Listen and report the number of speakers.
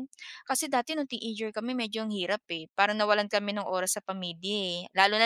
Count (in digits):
1